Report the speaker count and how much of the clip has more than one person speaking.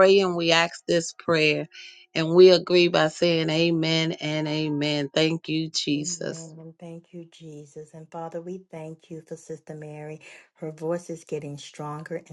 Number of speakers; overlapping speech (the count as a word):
two, about 3%